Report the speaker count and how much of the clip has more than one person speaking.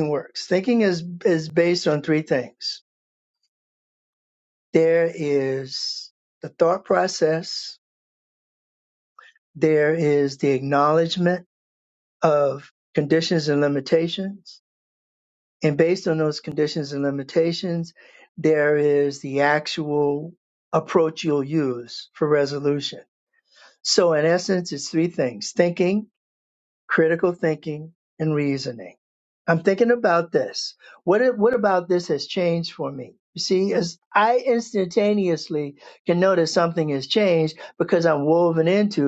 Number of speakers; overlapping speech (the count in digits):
1, no overlap